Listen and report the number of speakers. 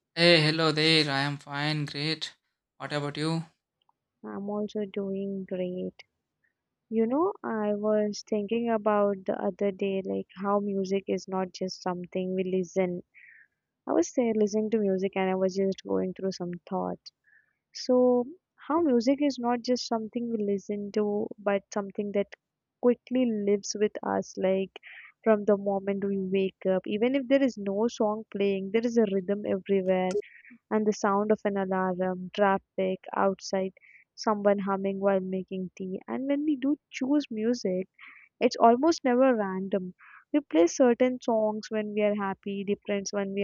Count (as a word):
two